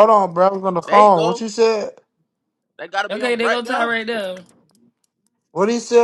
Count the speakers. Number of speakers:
3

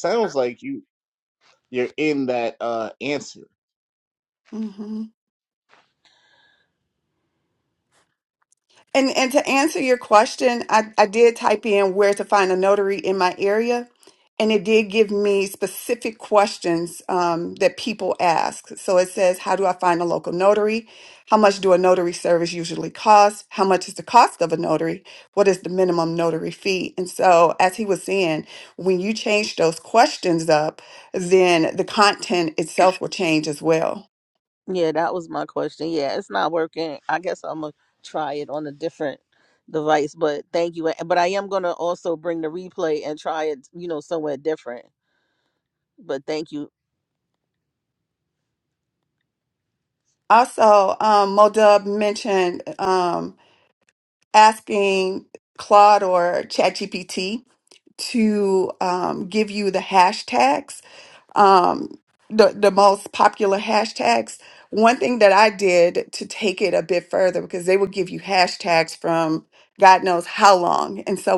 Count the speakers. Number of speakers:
3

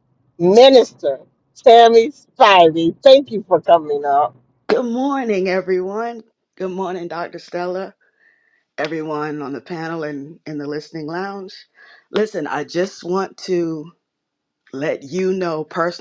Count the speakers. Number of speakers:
2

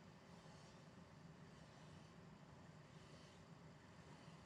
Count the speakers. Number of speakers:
0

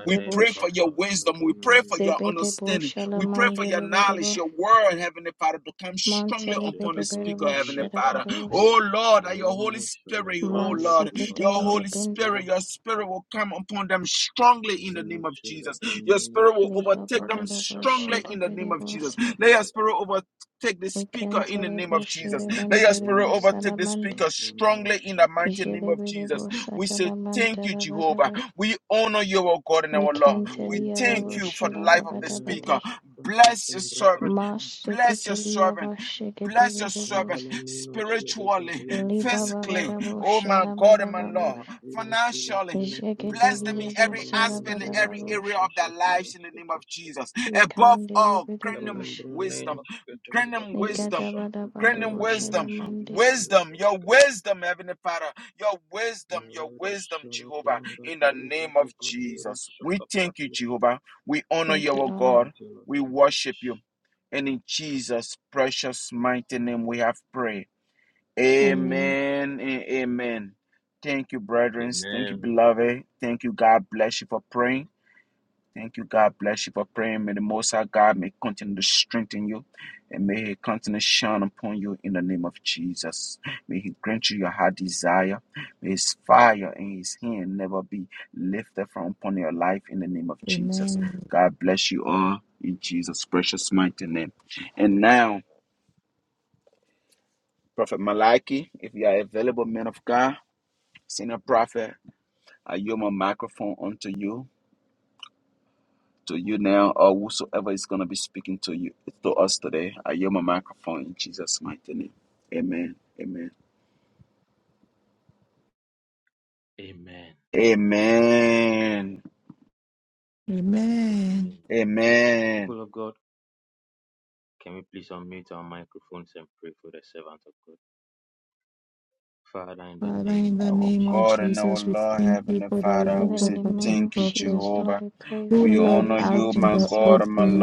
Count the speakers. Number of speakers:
4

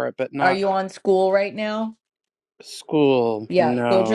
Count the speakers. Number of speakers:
2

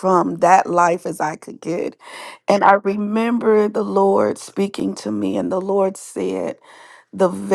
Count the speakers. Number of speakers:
1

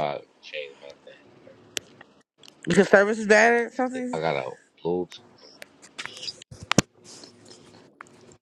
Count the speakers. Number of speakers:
2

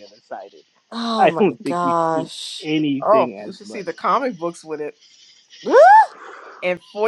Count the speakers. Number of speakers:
3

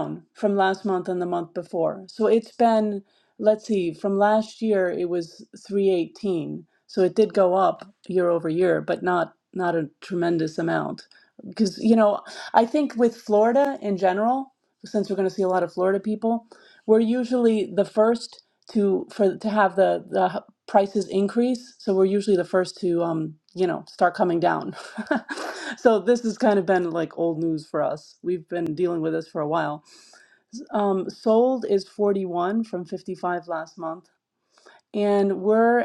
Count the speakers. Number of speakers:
1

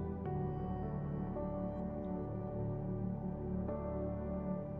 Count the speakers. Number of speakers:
0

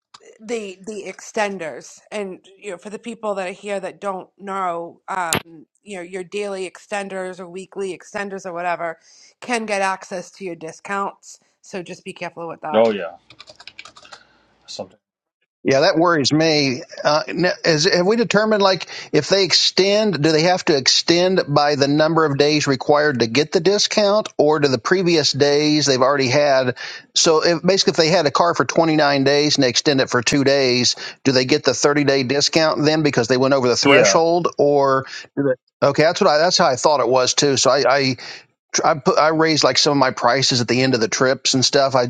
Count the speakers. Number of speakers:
3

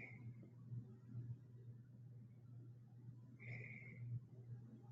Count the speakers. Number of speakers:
0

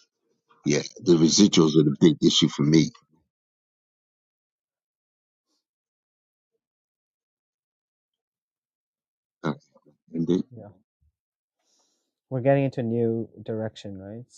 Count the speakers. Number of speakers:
2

